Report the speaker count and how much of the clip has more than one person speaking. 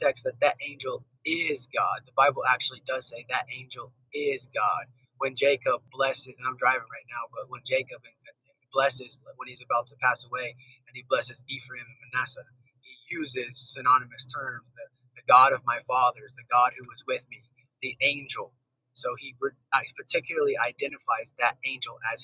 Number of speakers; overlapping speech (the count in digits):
1, no overlap